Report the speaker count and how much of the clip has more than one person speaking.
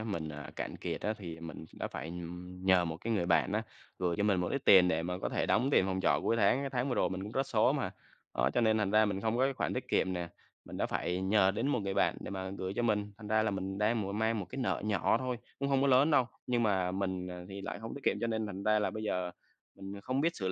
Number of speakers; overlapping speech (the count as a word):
one, no overlap